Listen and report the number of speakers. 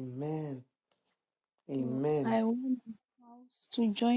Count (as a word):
two